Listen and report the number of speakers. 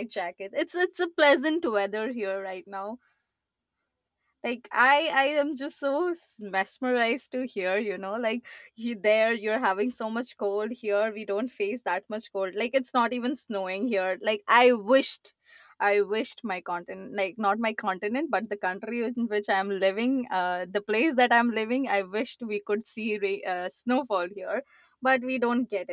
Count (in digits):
1